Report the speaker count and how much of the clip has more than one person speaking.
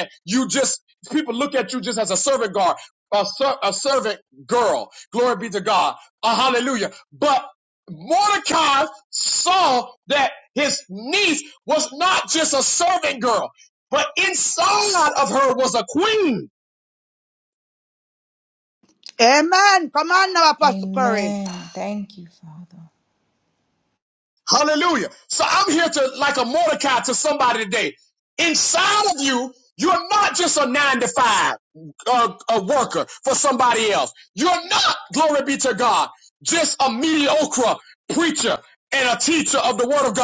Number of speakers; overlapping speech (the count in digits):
3, about 2%